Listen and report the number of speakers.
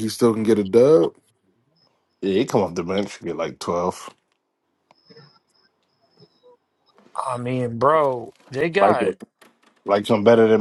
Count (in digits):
3